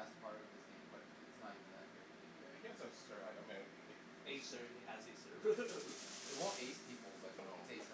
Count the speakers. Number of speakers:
3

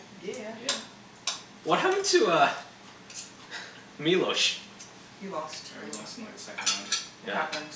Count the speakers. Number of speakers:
3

